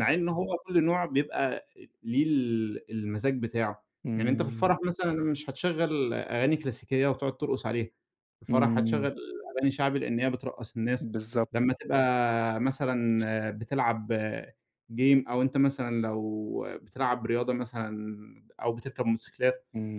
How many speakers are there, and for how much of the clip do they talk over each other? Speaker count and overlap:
two, about 6%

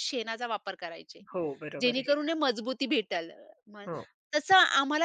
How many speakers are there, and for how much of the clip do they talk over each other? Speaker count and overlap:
two, about 10%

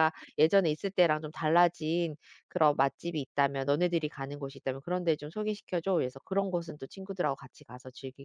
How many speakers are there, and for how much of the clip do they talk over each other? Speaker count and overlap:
one, no overlap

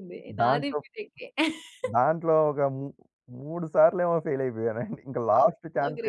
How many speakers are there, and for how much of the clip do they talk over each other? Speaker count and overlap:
two, about 19%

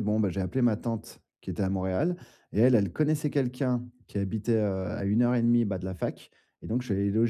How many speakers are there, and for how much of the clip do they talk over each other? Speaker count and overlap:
one, no overlap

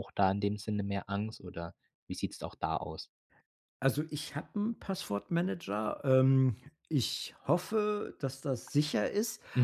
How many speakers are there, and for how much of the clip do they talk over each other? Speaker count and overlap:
two, no overlap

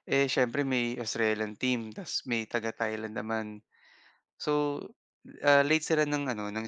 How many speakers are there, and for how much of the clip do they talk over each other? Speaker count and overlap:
one, no overlap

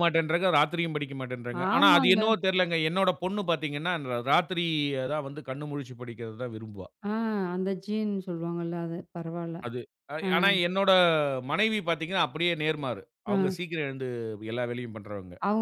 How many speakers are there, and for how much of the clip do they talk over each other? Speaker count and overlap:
two, about 6%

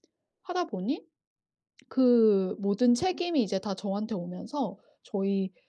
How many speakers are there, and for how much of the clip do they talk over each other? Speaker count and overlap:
one, no overlap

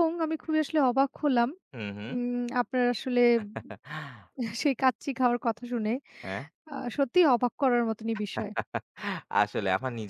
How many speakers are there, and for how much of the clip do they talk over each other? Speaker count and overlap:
two, about 1%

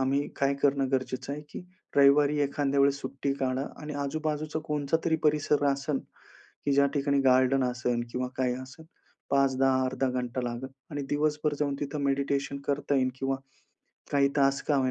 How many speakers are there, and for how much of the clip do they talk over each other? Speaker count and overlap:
one, no overlap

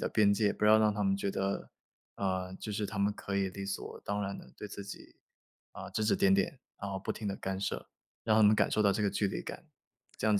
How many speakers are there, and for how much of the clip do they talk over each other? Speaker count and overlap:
one, no overlap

